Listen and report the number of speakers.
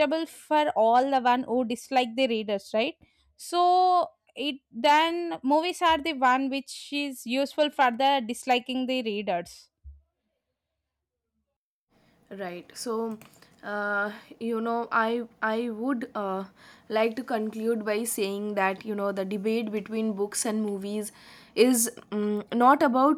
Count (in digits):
2